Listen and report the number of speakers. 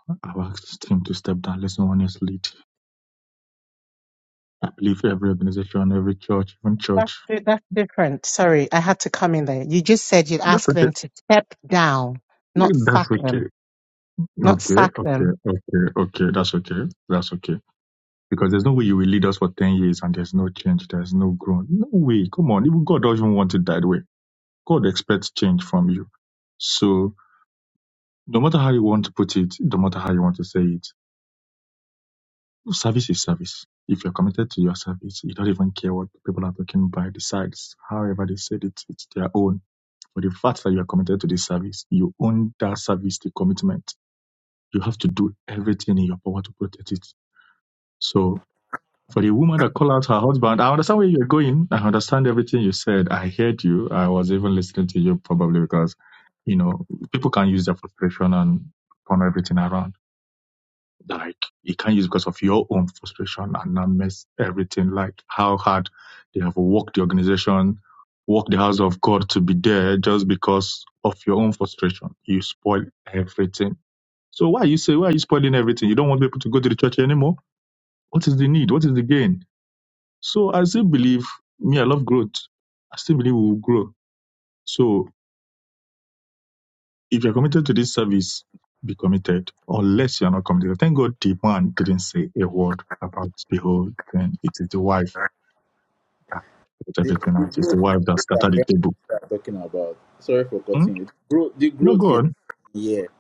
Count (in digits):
3